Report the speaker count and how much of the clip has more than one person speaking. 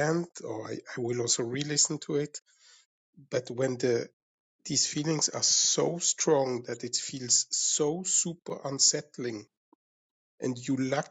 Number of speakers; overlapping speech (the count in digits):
1, no overlap